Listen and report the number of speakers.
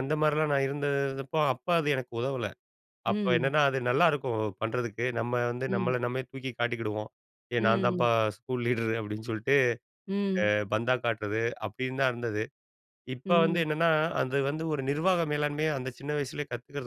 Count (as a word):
two